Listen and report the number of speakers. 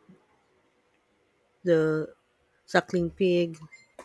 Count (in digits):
1